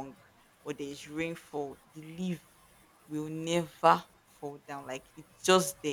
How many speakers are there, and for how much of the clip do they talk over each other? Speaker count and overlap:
one, no overlap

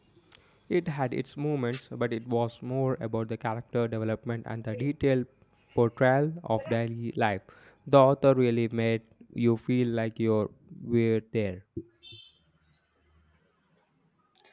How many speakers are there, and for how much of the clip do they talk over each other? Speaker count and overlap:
one, no overlap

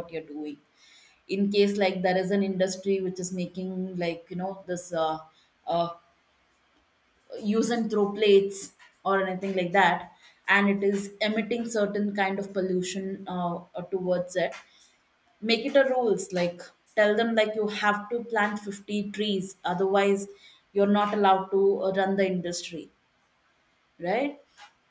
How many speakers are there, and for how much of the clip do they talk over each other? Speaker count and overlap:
one, no overlap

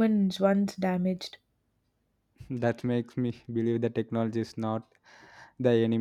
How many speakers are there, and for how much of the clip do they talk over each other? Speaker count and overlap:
two, no overlap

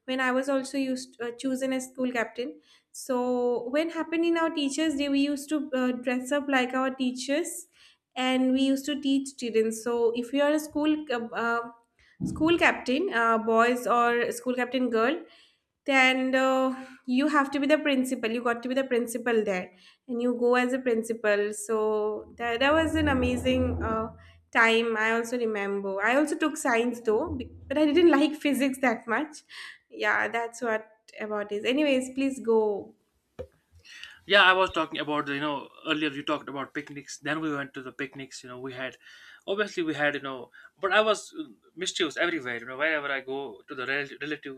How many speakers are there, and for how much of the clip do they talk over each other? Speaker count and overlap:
two, no overlap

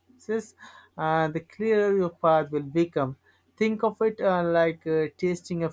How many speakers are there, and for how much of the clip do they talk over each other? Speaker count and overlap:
one, no overlap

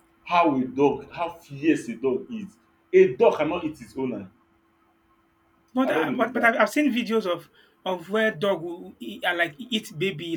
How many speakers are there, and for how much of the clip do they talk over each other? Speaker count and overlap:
two, about 7%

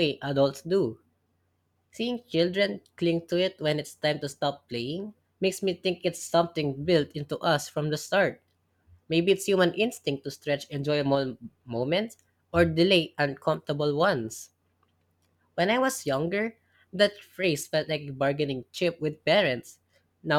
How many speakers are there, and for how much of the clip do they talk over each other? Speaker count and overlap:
one, no overlap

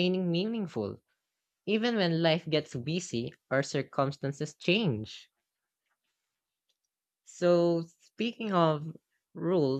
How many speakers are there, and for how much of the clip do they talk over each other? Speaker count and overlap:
one, no overlap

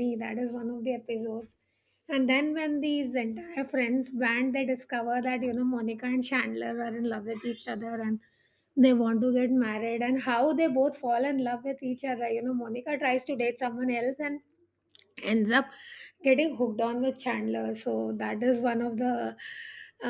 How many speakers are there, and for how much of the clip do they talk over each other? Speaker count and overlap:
one, no overlap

